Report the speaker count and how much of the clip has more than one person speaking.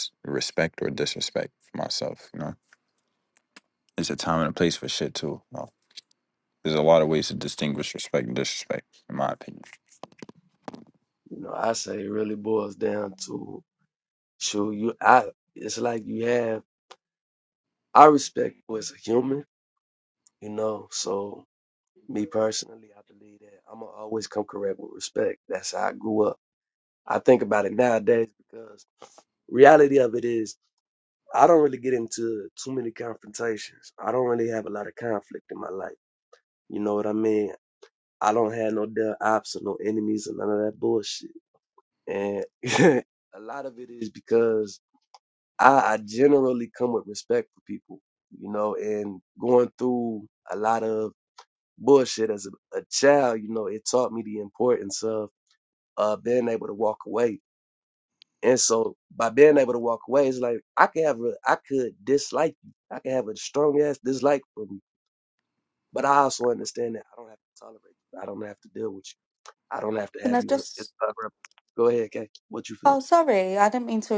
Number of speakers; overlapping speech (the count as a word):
three, about 1%